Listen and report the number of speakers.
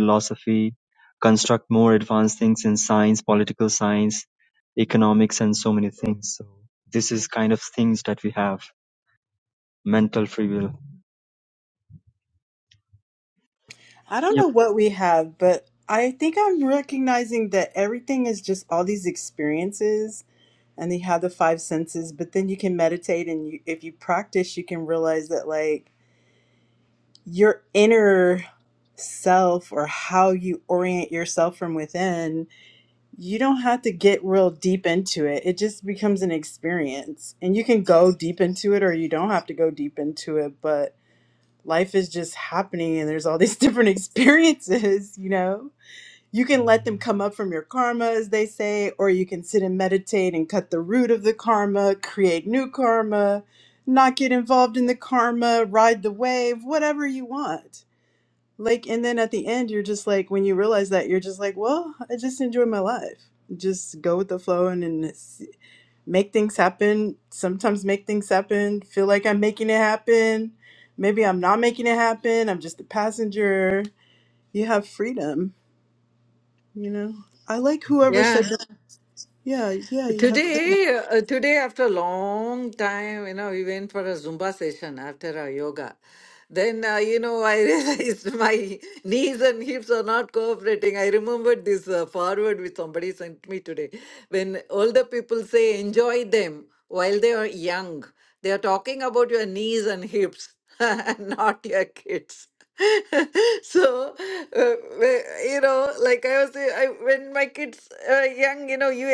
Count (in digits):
3